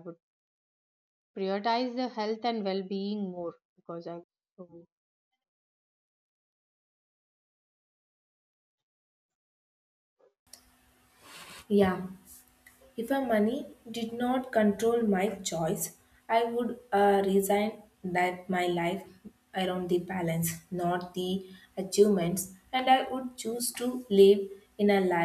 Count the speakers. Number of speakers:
two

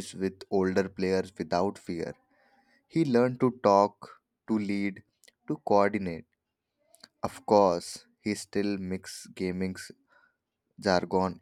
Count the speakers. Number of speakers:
one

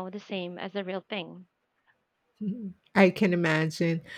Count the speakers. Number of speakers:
two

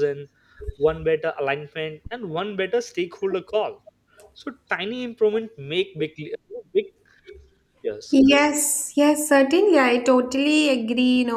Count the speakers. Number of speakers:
two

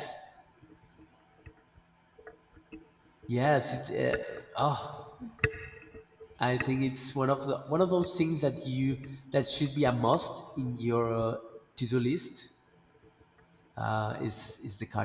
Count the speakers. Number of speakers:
one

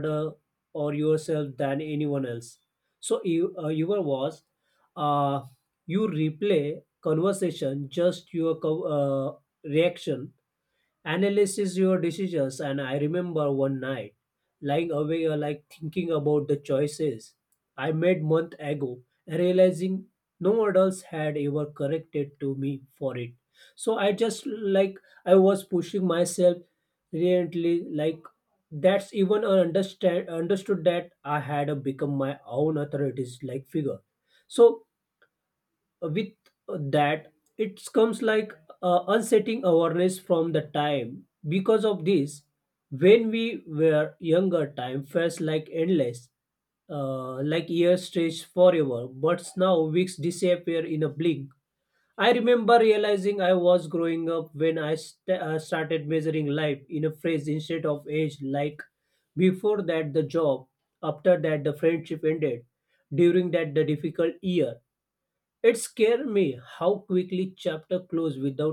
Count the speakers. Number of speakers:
one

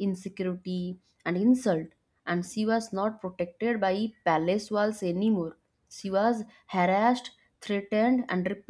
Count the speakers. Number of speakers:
one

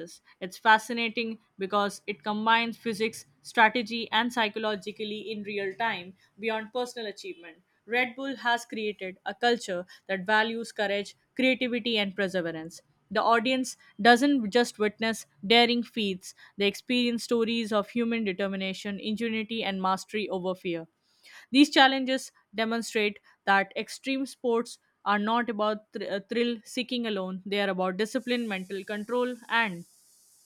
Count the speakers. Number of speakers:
one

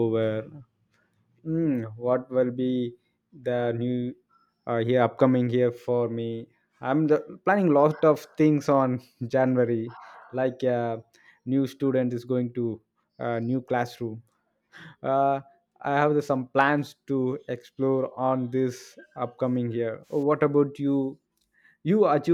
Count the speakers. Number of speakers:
one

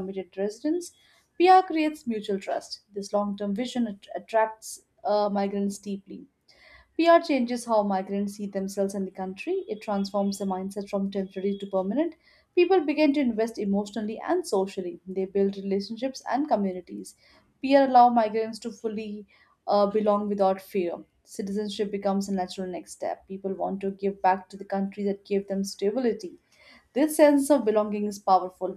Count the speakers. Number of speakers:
one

